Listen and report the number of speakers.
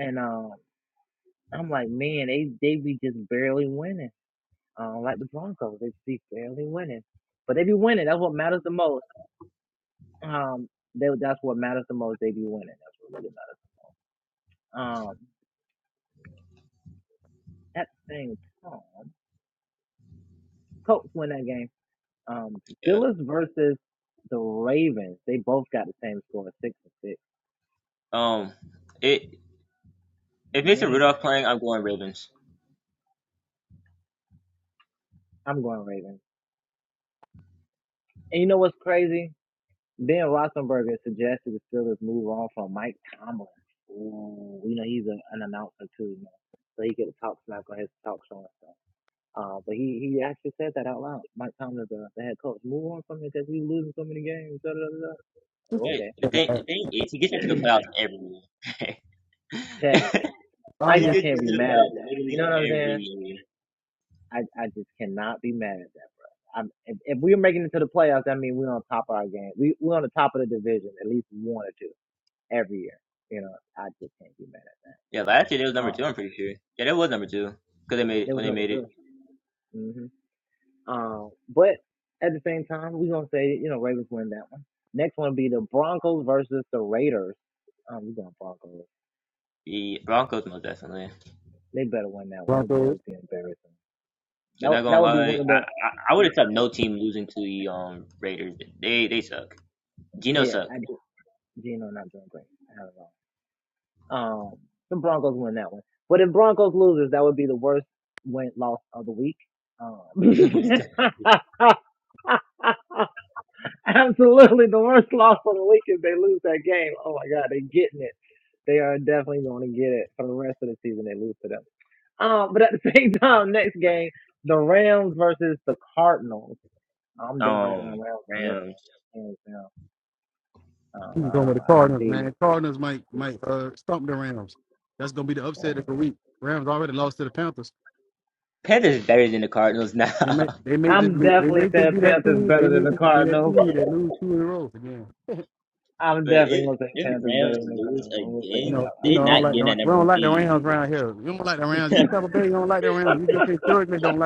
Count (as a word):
three